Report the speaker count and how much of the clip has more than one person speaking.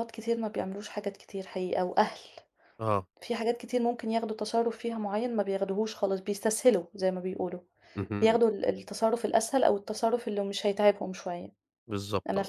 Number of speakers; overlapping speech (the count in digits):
2, about 3%